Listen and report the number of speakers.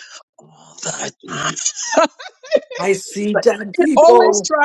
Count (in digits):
2